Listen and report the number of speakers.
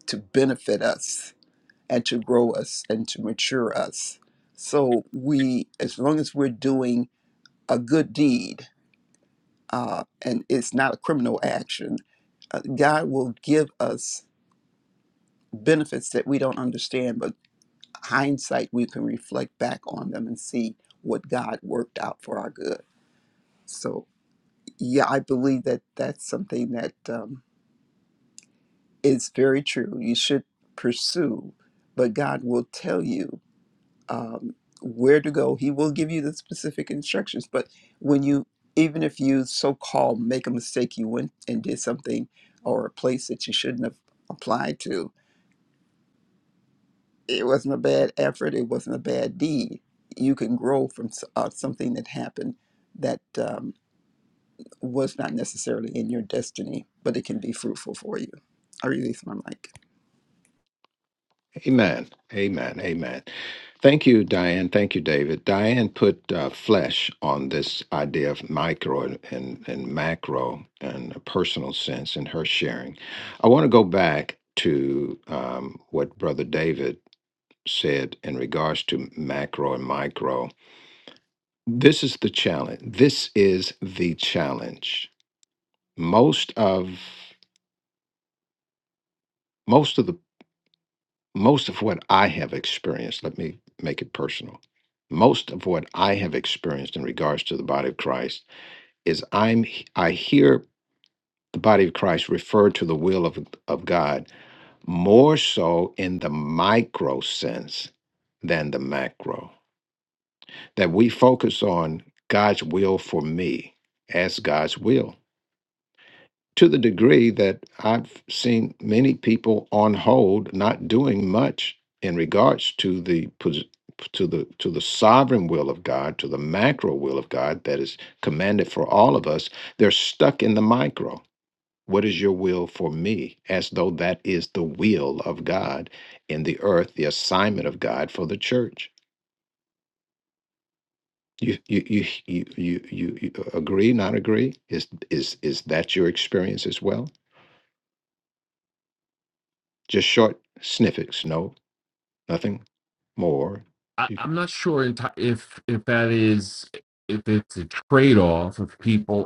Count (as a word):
three